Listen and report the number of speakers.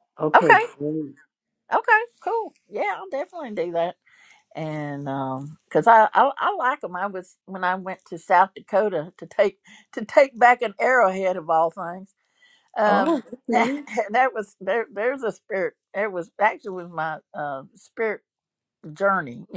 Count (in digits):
2